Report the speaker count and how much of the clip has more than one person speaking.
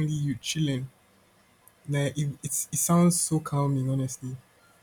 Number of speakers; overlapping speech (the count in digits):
1, no overlap